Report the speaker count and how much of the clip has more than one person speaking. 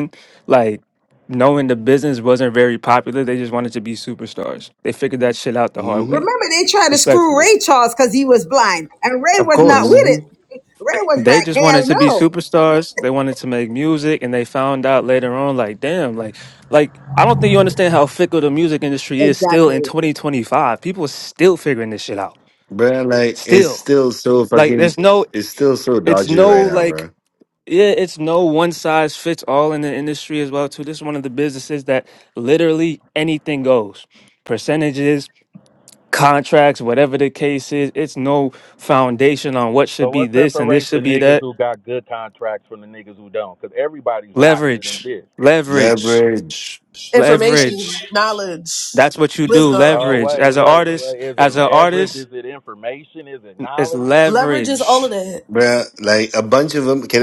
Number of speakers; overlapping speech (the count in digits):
5, about 21%